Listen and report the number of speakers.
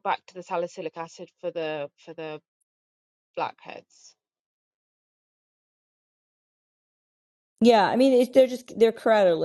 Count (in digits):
2